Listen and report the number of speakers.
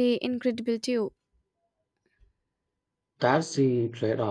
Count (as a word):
two